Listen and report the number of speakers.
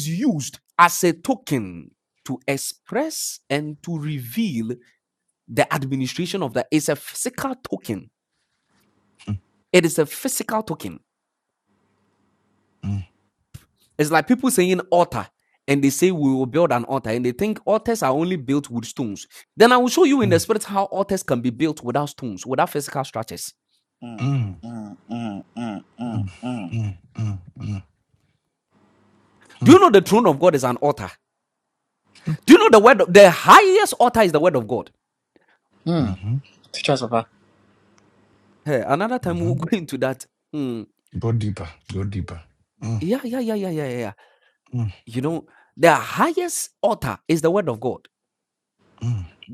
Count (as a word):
three